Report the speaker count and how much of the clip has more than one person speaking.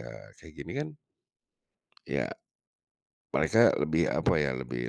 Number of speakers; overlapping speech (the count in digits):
1, no overlap